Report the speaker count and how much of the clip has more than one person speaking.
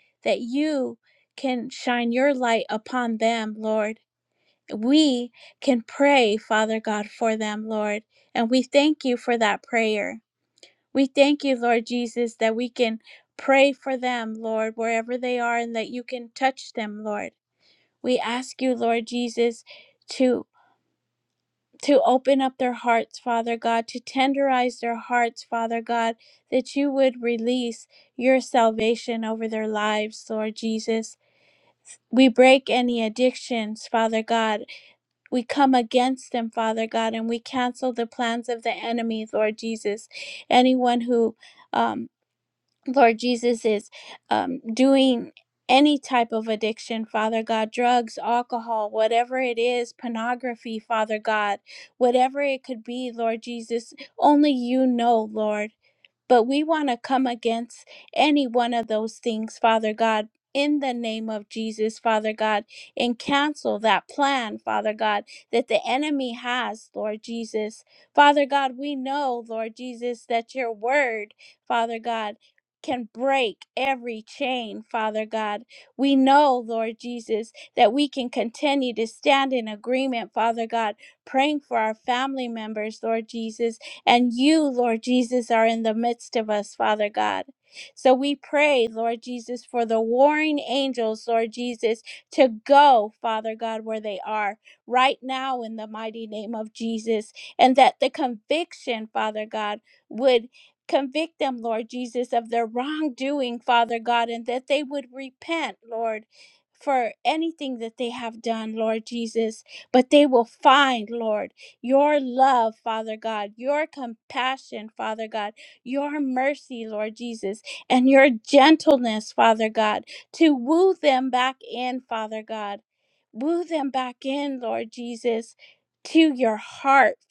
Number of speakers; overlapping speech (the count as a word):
one, no overlap